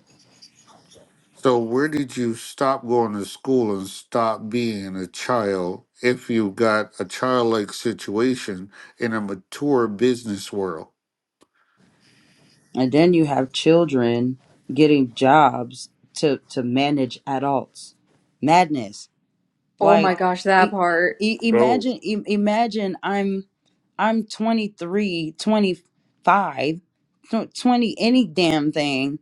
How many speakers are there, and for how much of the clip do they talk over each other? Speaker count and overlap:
three, about 3%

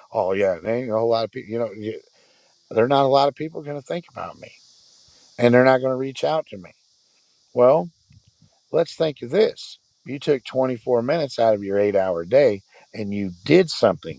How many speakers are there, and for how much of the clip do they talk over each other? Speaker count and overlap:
one, no overlap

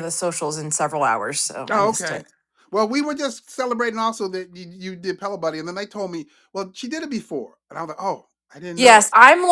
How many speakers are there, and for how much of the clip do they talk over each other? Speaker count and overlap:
two, about 9%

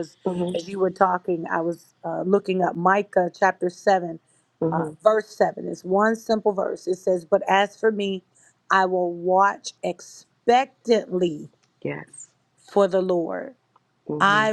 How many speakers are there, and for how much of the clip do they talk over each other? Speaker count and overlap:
two, about 4%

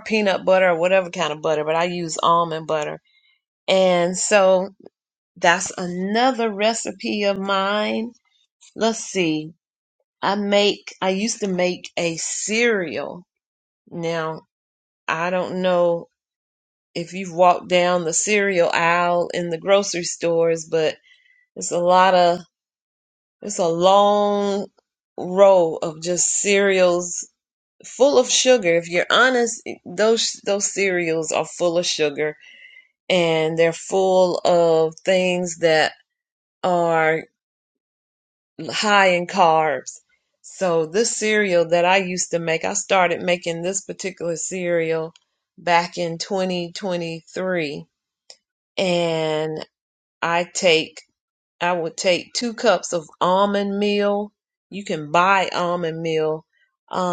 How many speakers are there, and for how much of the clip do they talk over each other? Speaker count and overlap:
one, no overlap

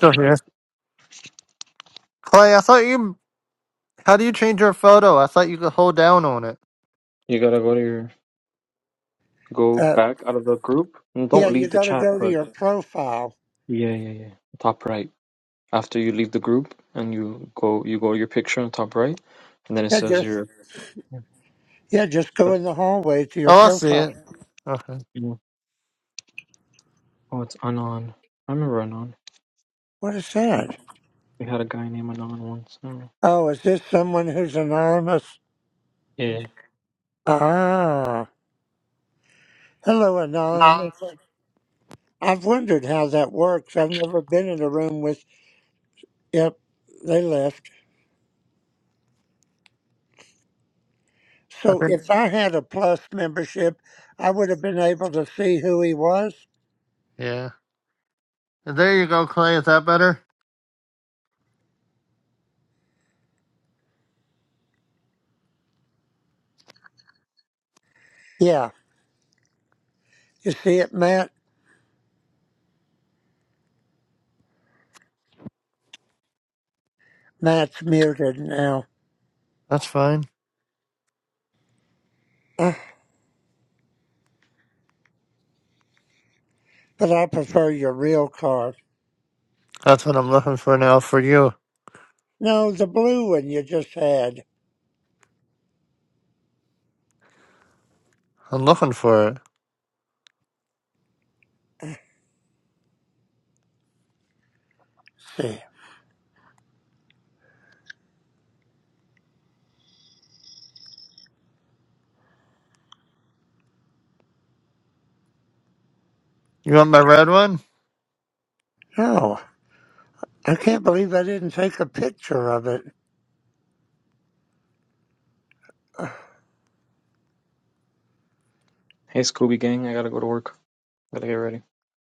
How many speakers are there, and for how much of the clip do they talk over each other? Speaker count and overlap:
three, about 2%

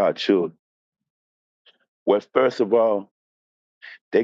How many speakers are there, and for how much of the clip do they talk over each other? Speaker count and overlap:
one, no overlap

